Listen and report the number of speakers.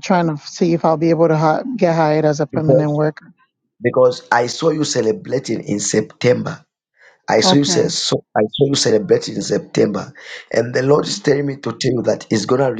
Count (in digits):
2